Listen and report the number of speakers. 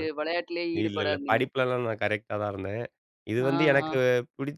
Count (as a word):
two